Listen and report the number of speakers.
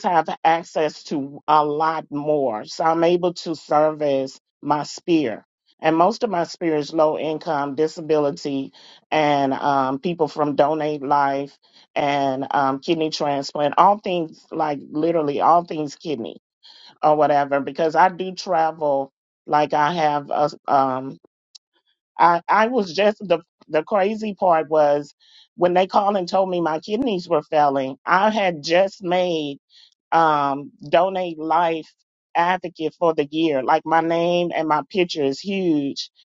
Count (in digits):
1